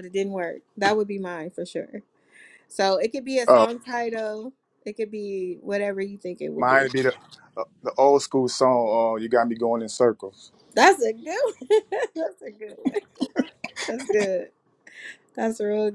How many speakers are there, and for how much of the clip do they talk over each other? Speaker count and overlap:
2, about 4%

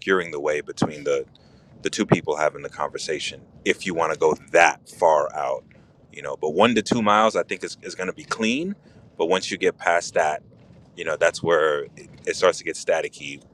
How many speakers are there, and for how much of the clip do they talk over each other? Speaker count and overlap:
1, no overlap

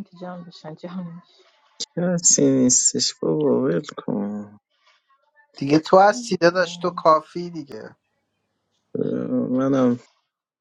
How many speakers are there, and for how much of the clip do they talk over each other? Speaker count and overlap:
3, about 8%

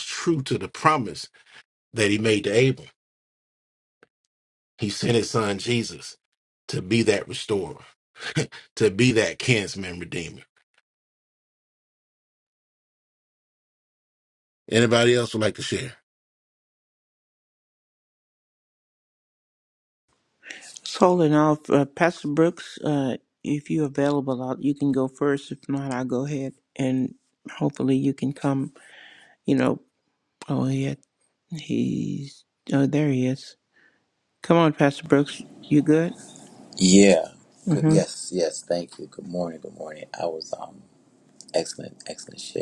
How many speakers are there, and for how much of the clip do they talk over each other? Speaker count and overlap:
3, about 1%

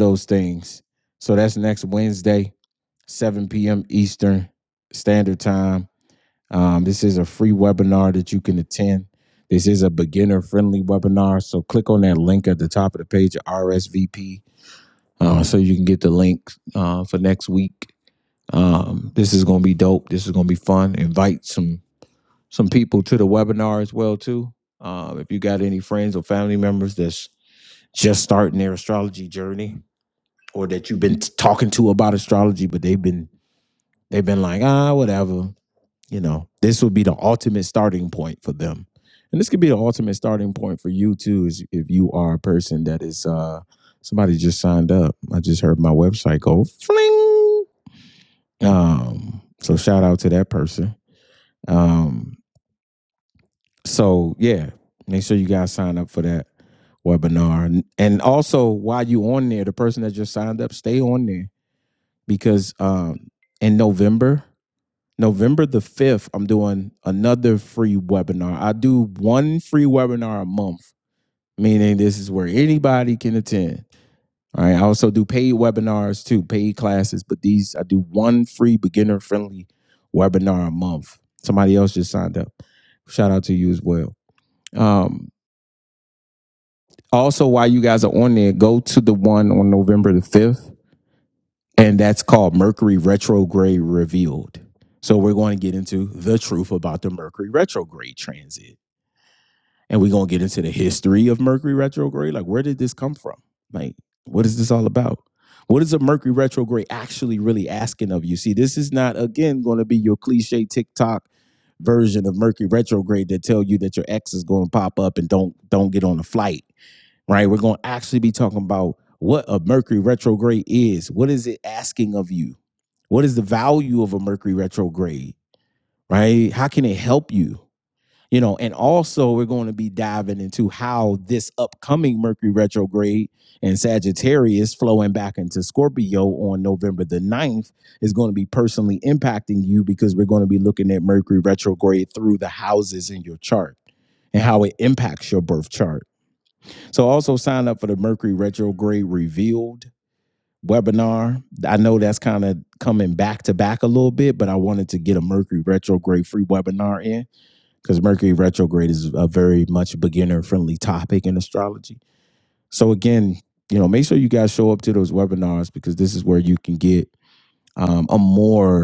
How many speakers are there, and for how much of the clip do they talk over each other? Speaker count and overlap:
1, no overlap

